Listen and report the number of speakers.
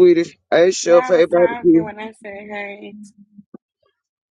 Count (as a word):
two